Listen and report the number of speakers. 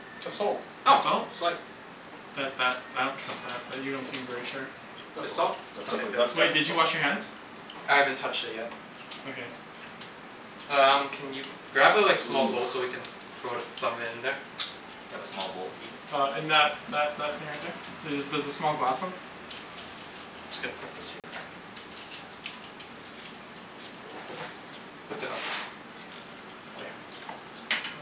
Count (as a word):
four